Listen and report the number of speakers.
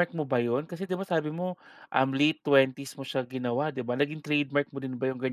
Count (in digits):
1